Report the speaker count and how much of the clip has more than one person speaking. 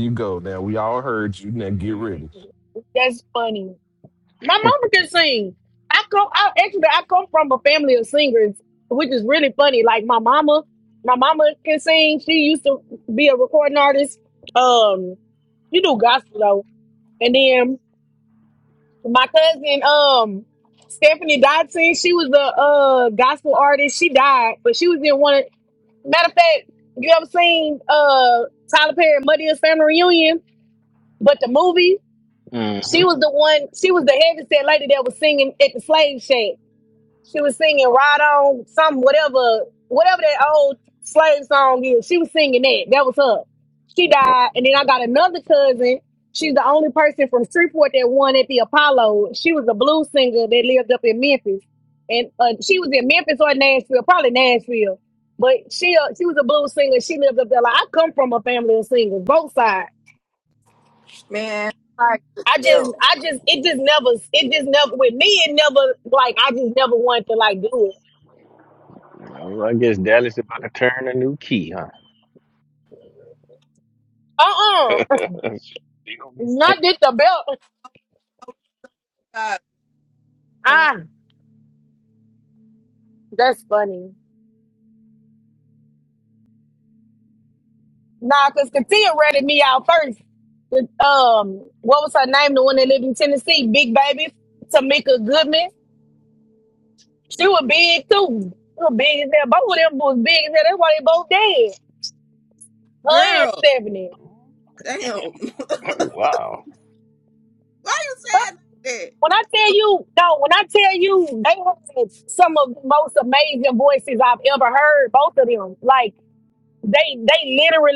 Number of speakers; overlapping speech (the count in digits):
4, about 2%